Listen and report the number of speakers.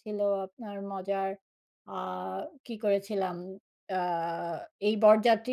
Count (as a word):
one